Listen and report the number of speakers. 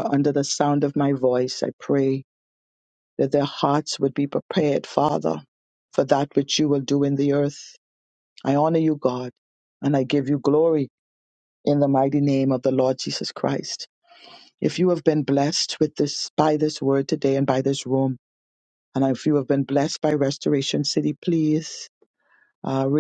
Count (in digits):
1